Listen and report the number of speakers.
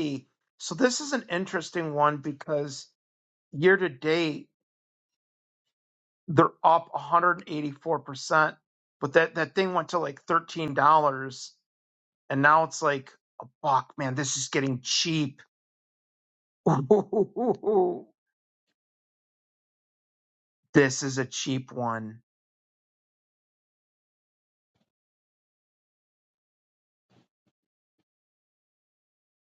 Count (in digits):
1